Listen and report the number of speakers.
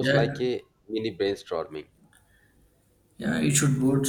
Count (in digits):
2